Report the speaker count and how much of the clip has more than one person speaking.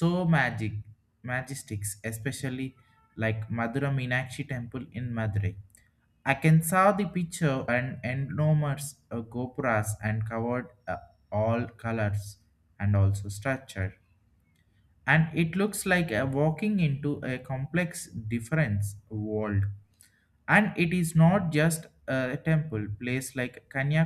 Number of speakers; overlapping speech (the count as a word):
one, no overlap